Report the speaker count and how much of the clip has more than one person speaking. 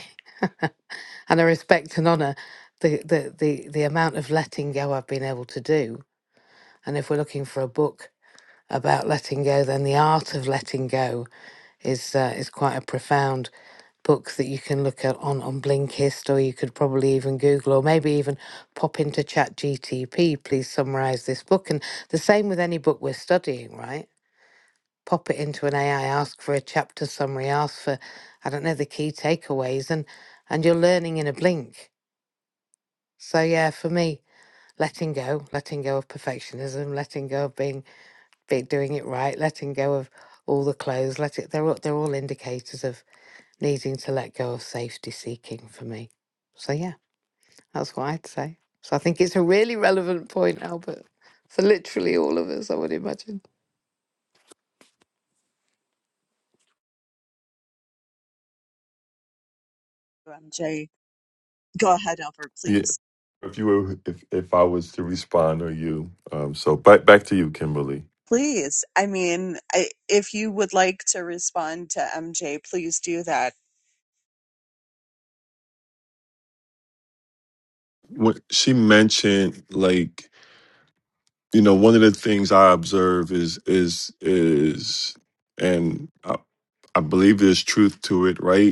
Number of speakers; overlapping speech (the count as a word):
three, under 1%